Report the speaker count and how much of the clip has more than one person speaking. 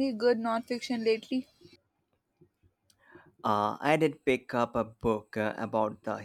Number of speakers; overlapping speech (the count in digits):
2, no overlap